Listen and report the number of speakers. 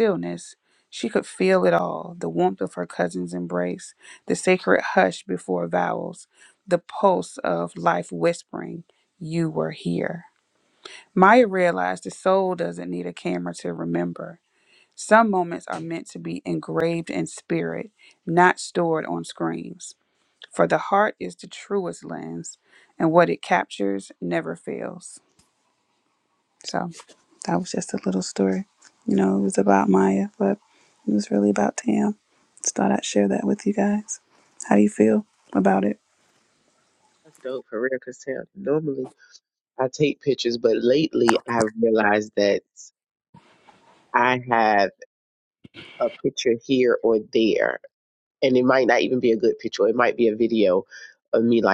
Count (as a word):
two